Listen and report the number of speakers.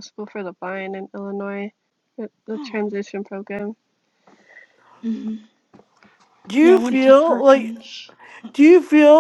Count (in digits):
3